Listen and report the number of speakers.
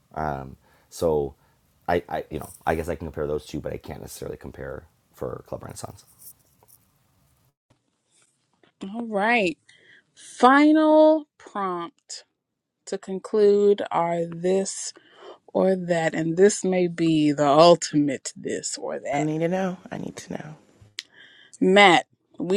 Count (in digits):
3